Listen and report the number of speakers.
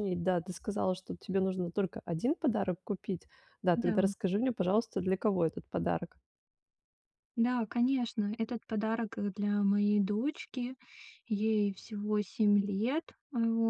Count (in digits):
2